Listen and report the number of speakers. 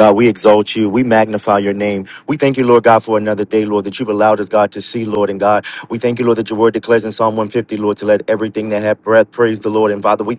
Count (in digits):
1